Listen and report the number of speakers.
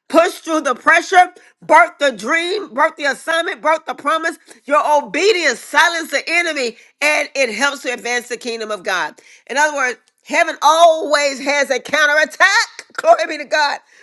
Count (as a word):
one